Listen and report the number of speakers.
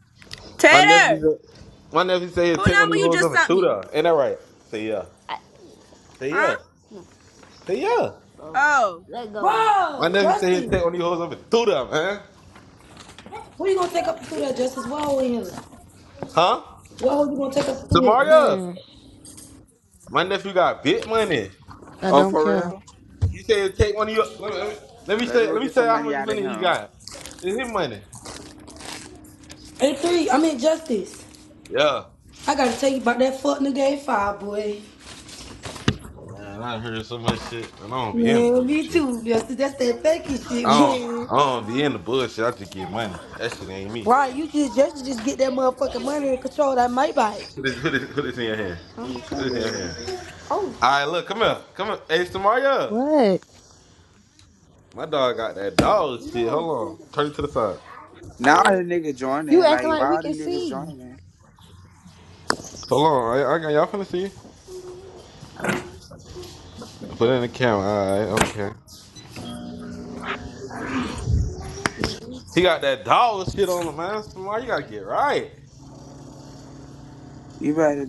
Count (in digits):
5